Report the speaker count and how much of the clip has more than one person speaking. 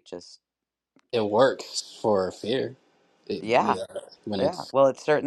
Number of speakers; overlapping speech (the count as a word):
two, about 9%